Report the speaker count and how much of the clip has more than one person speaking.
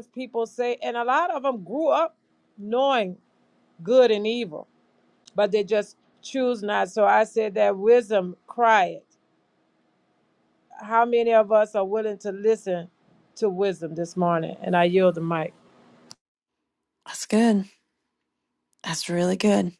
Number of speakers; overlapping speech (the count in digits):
2, no overlap